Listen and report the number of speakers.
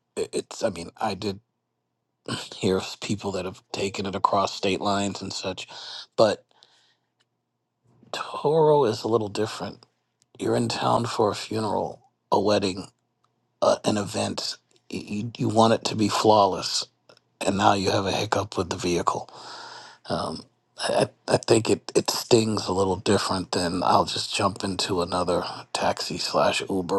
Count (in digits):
1